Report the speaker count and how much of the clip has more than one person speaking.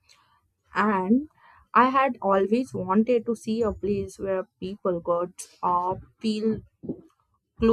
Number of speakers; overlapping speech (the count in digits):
1, no overlap